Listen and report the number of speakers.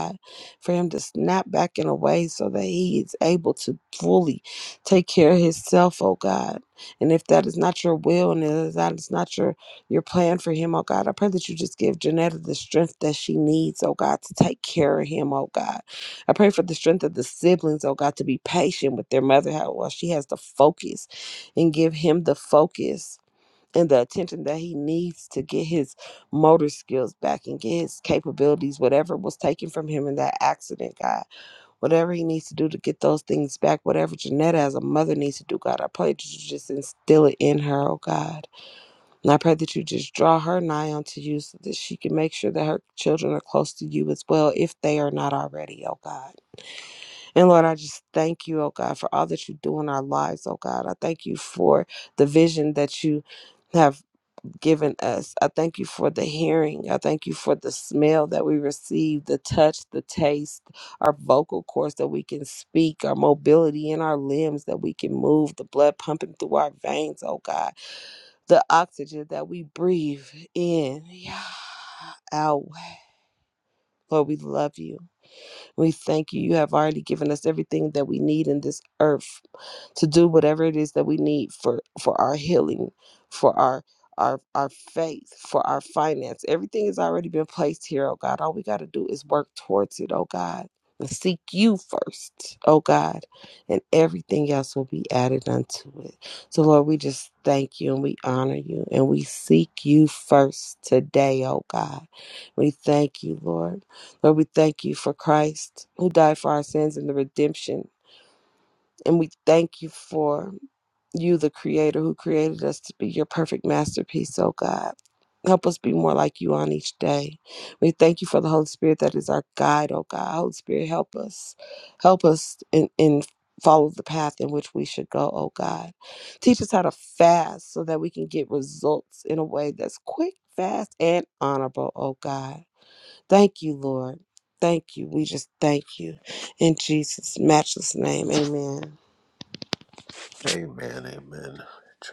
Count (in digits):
2